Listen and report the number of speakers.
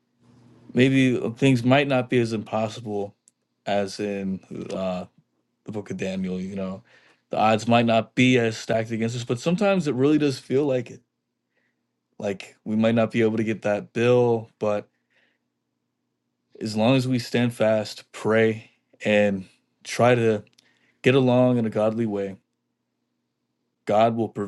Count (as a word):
one